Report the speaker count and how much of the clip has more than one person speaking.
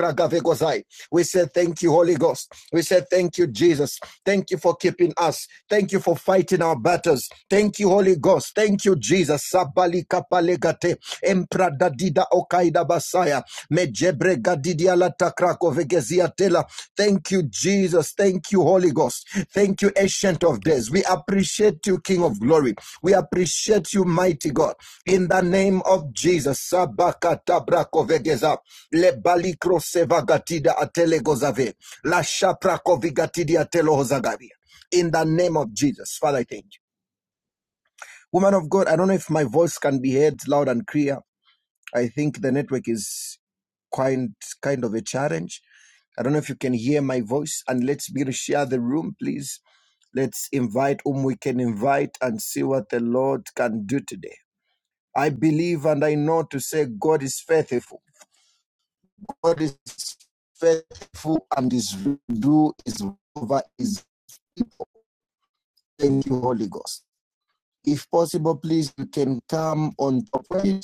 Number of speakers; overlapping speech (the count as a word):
one, no overlap